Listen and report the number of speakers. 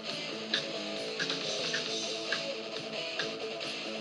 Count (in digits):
0